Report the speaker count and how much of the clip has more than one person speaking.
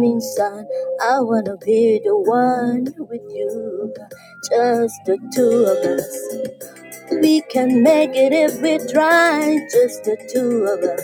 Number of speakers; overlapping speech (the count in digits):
1, no overlap